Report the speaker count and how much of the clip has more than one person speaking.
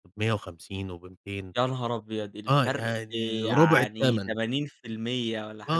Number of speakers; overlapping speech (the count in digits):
2, about 27%